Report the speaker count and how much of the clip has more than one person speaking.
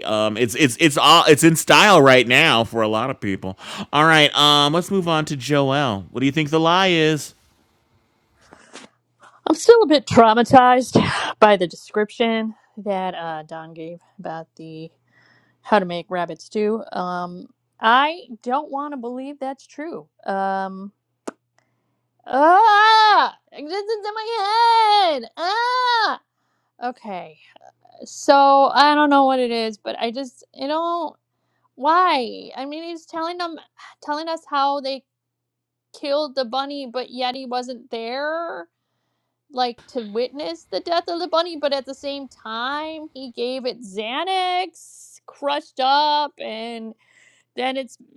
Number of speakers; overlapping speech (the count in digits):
2, no overlap